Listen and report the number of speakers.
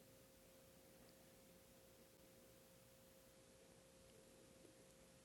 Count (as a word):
zero